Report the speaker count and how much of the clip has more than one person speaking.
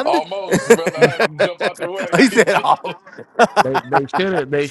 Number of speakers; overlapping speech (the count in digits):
3, about 6%